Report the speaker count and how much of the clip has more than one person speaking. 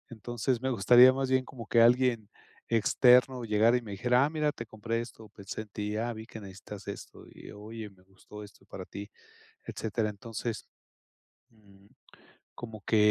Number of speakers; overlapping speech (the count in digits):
1, no overlap